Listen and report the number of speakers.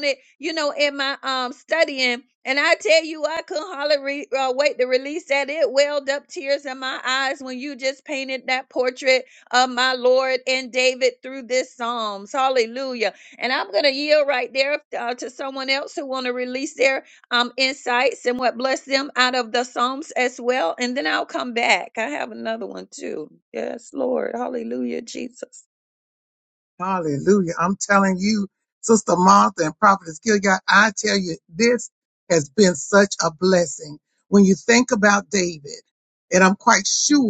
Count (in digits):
2